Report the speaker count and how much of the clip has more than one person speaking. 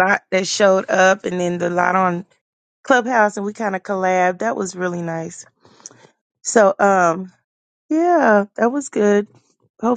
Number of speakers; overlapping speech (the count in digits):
1, no overlap